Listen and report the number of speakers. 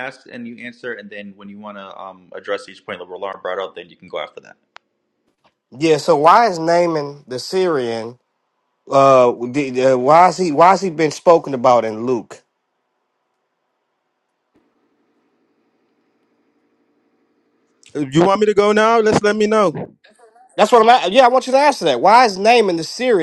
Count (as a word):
three